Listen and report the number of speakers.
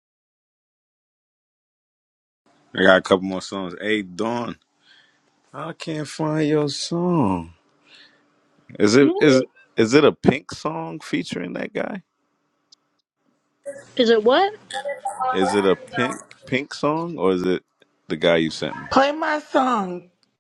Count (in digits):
3